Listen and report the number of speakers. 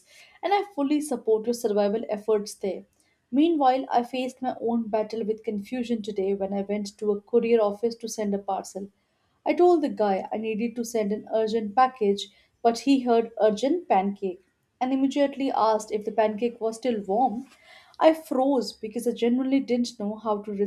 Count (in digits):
1